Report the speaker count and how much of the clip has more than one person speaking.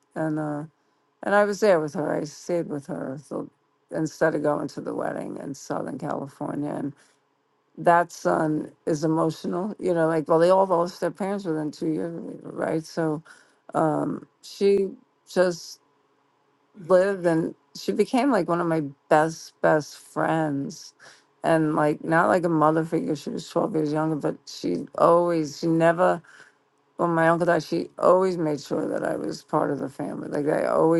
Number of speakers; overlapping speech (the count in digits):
1, no overlap